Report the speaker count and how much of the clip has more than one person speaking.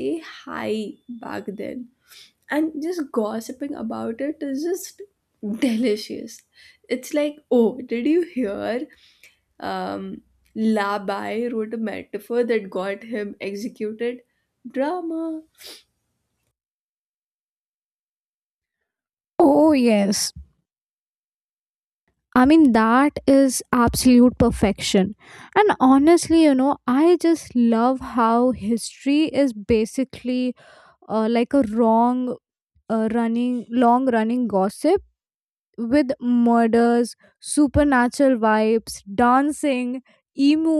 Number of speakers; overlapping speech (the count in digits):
2, no overlap